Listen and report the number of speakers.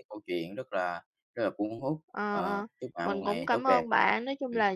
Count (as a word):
two